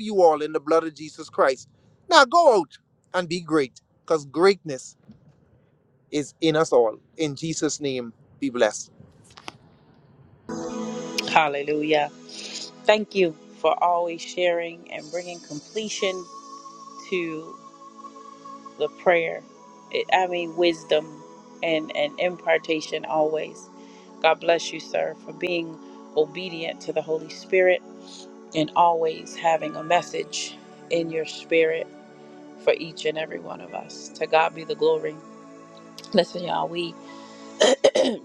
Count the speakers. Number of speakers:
2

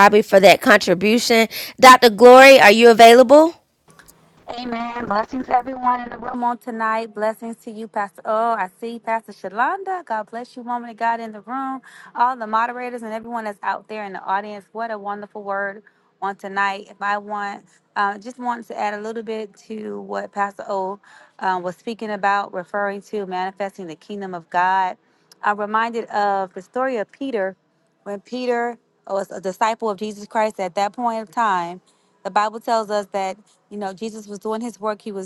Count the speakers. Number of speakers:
2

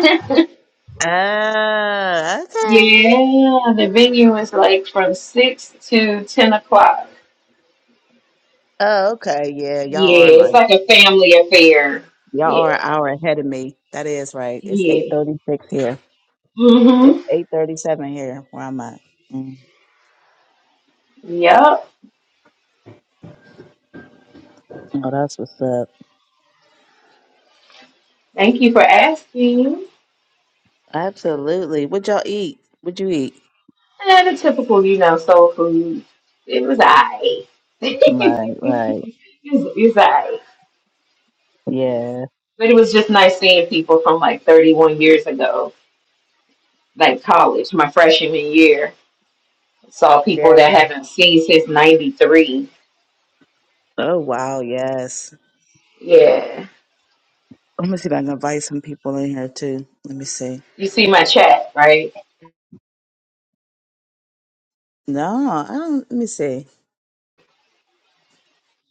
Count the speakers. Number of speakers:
2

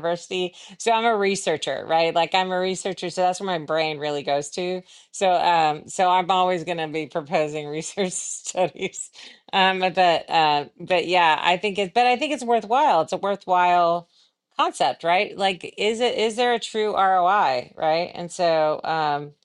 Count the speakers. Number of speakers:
1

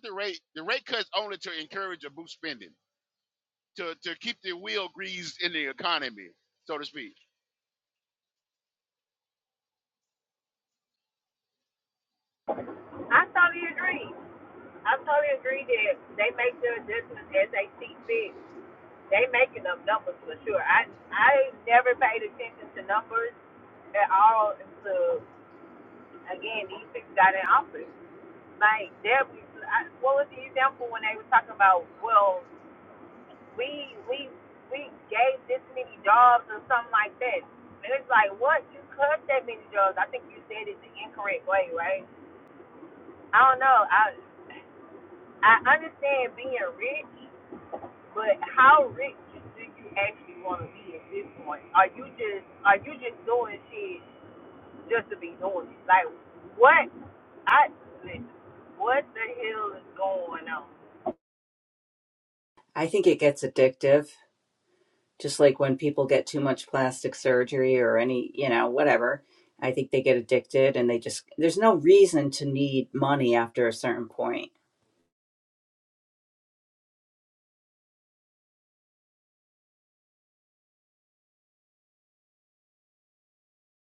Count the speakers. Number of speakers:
3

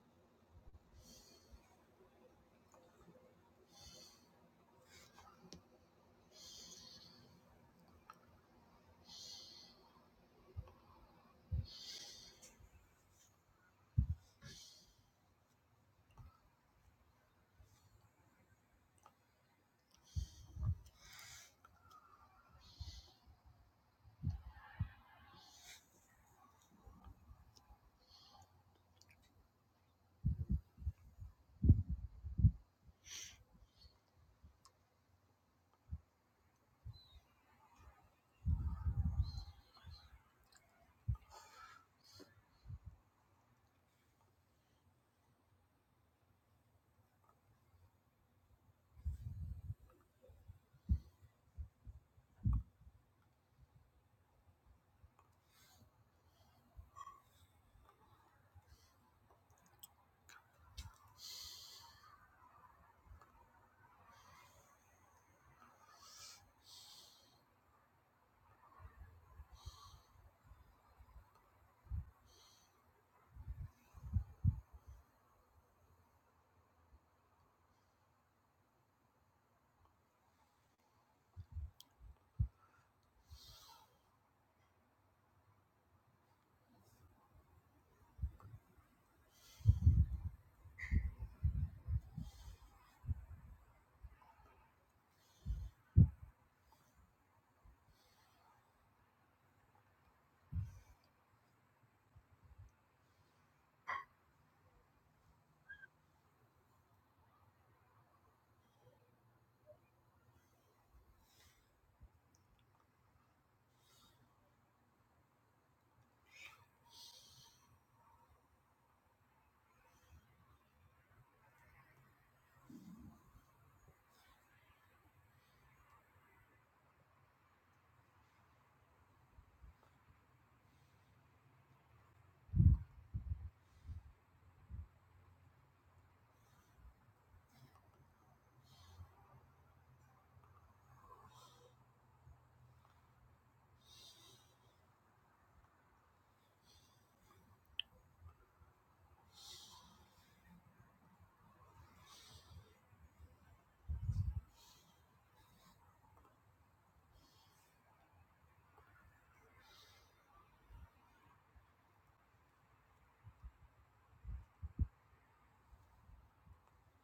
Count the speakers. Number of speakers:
0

